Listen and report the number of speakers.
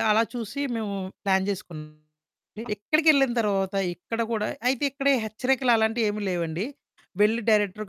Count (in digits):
1